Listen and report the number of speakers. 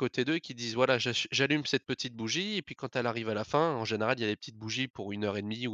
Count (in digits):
1